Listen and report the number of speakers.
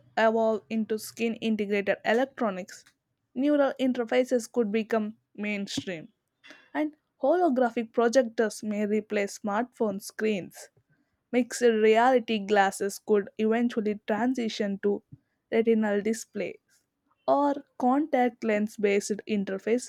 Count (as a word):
one